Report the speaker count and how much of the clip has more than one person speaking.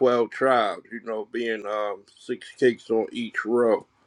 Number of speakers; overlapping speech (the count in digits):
1, no overlap